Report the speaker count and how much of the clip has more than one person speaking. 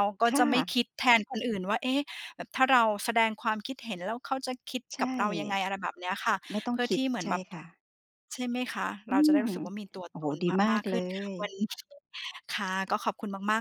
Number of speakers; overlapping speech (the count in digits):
2, about 17%